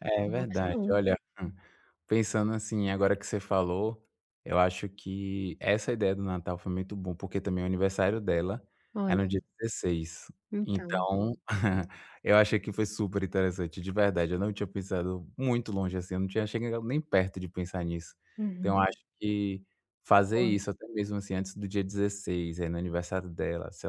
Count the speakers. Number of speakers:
2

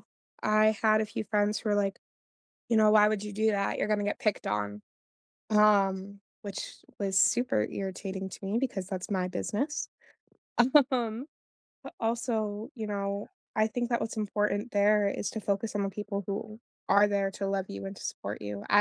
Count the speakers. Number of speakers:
1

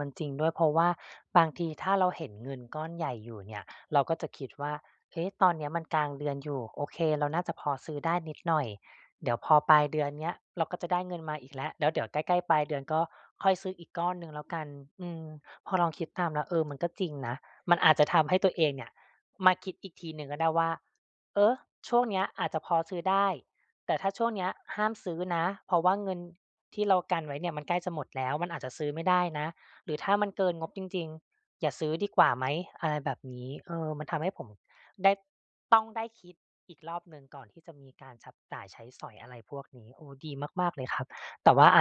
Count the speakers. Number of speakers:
1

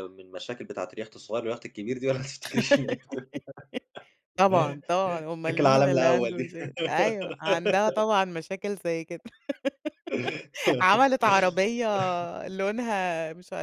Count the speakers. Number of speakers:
2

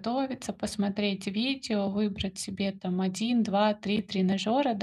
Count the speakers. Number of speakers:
1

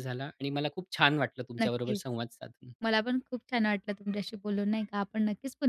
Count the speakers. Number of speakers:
2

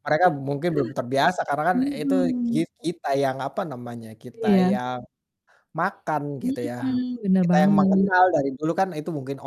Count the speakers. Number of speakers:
2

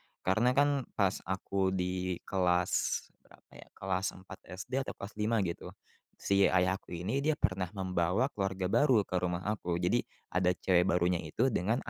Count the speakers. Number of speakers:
1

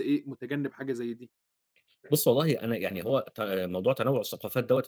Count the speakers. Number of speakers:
2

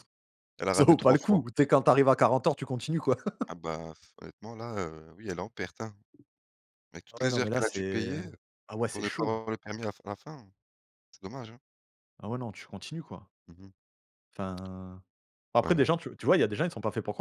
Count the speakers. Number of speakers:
2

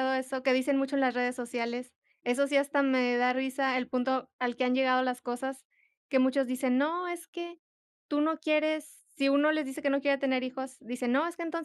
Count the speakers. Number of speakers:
1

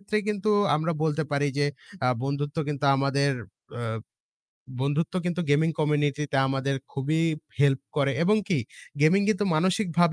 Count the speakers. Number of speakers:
1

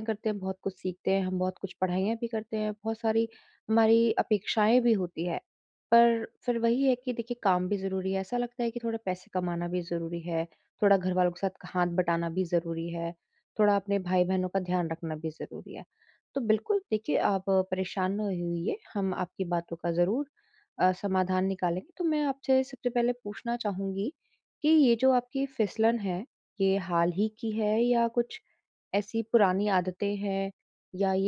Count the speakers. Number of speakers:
1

